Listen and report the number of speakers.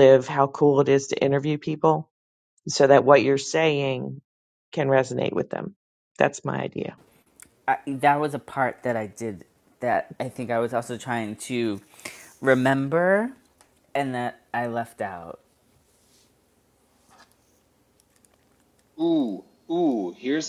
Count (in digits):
3